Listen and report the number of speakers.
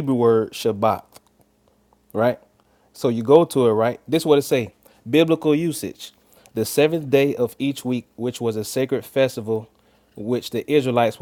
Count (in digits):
1